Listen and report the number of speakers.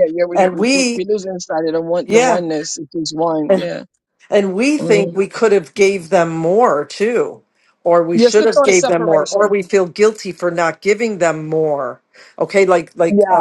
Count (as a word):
two